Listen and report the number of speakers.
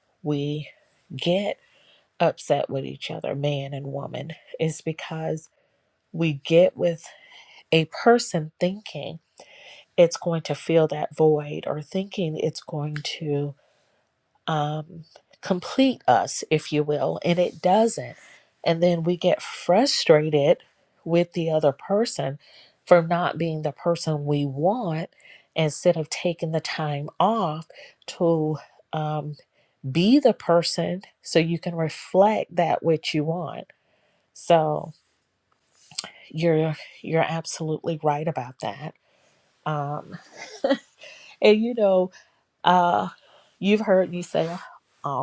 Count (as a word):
one